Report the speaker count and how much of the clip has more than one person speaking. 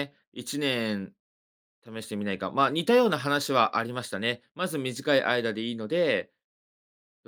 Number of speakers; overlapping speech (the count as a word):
one, no overlap